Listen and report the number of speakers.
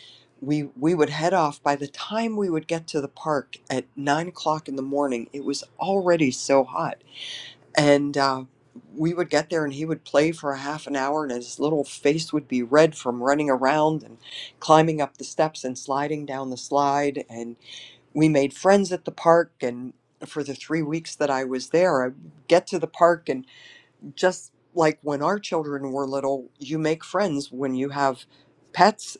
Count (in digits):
1